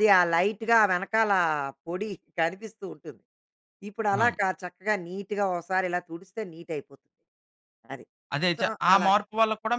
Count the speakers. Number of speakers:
2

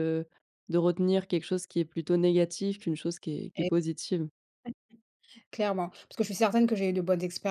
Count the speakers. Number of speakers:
2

